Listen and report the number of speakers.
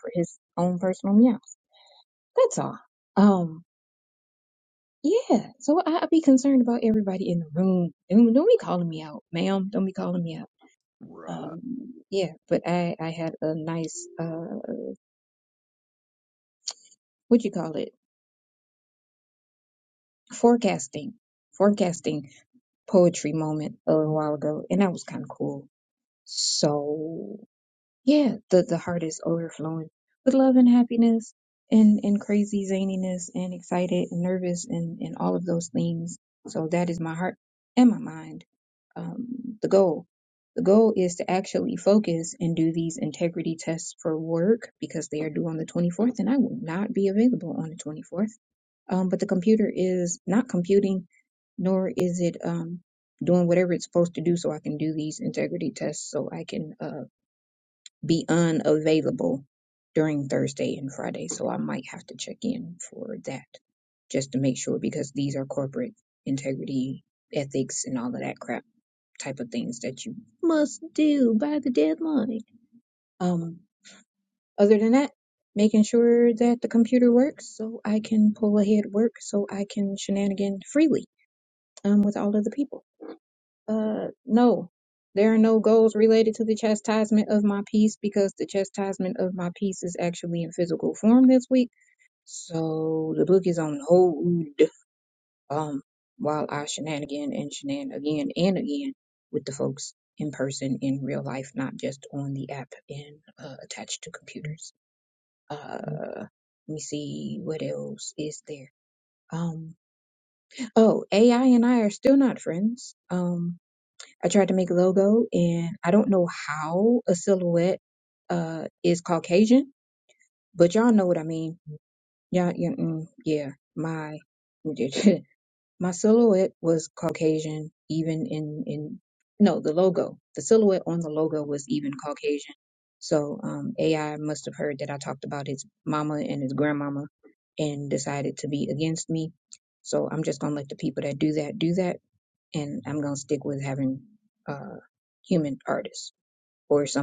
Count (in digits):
1